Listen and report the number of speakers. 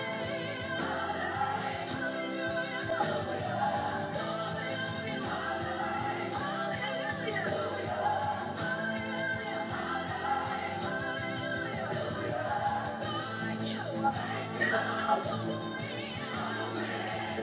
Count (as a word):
zero